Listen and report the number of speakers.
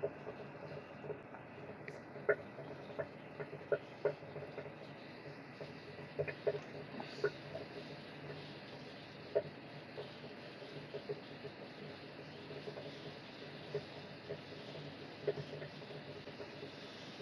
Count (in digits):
0